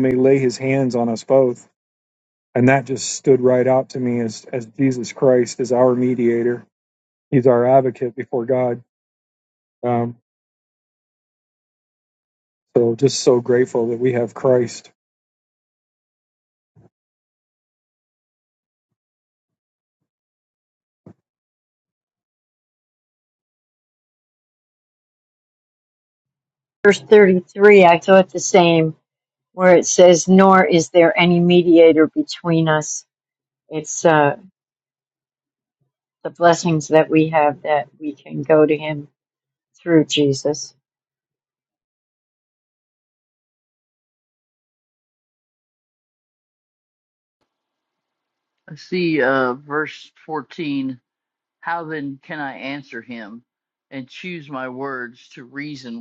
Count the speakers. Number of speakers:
3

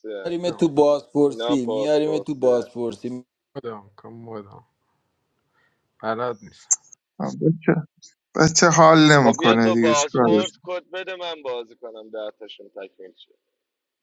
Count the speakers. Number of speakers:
4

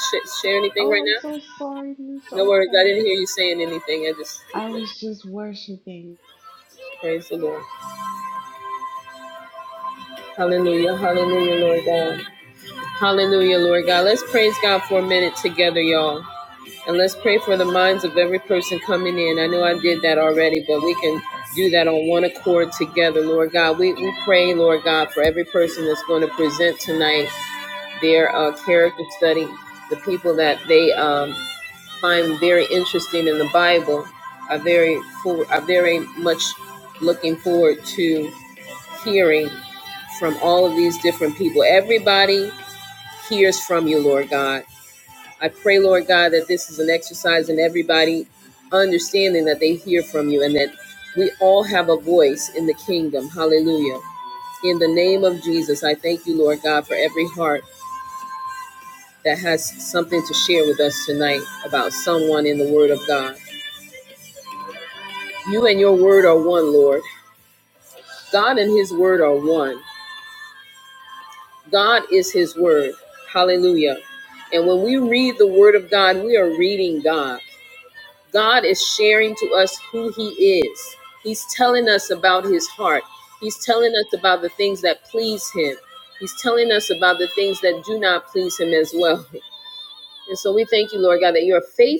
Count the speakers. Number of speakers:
2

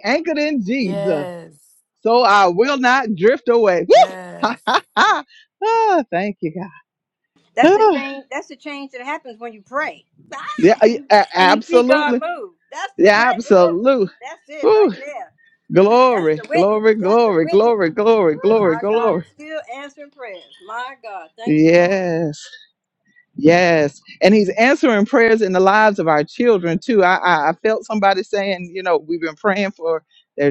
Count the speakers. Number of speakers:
3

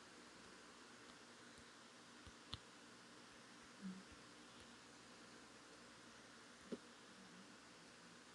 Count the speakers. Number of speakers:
0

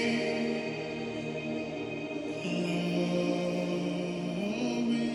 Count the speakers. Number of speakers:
0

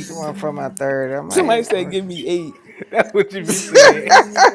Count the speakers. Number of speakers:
3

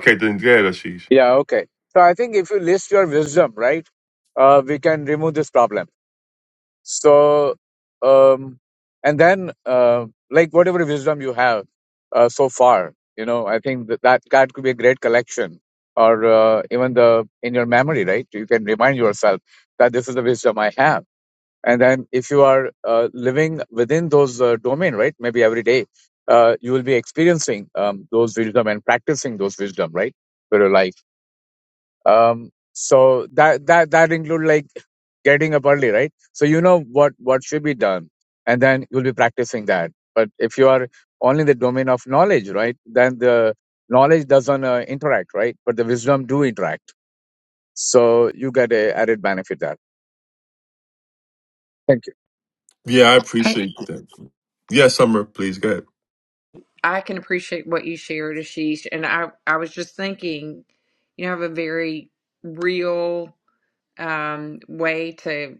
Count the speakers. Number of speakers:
3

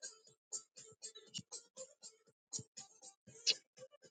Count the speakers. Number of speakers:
0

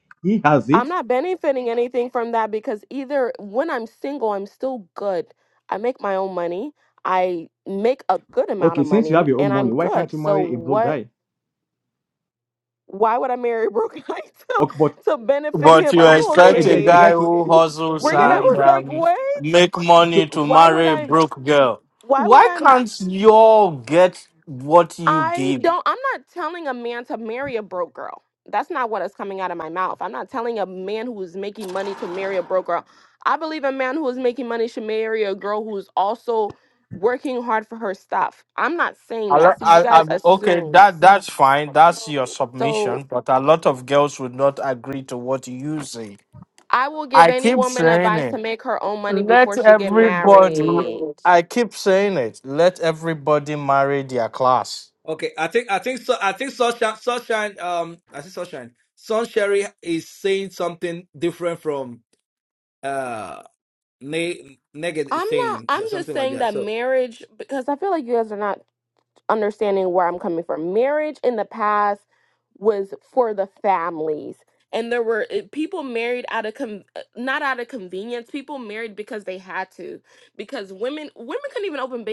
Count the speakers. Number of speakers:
4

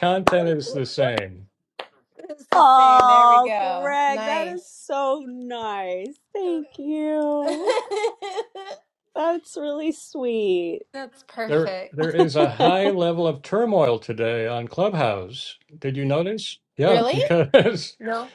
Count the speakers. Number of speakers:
3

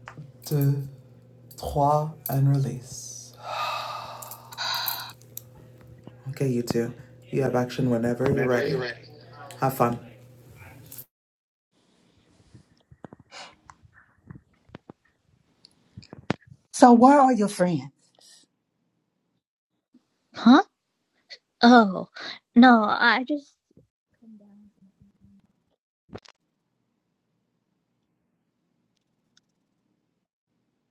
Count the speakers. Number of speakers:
3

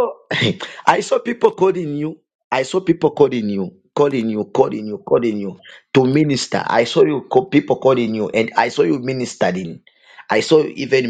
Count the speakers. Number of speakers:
1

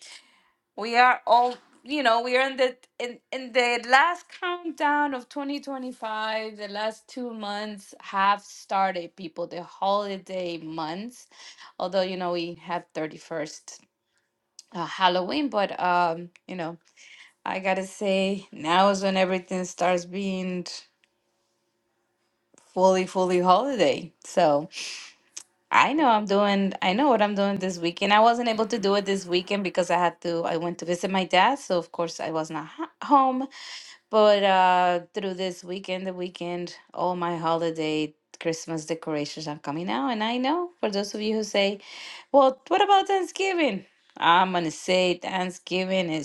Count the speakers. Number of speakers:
1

